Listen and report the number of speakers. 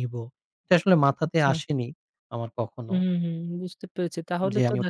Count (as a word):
two